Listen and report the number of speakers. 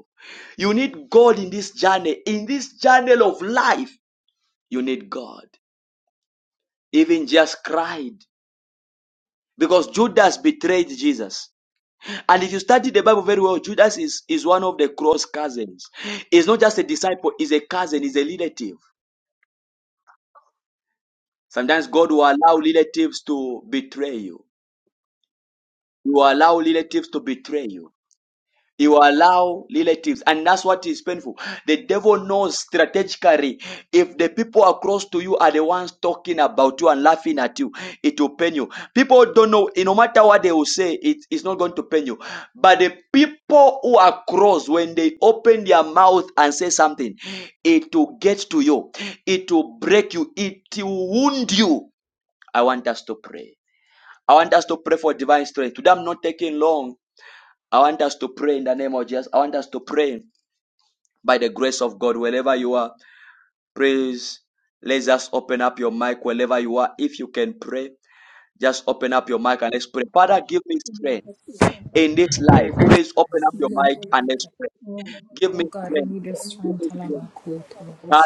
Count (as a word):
two